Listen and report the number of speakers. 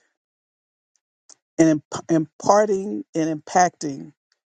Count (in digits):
1